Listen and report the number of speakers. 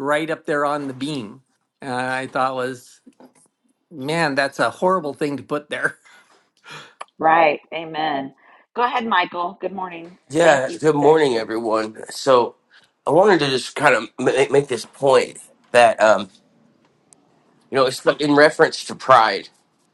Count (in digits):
3